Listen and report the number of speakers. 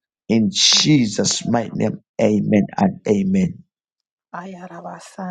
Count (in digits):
2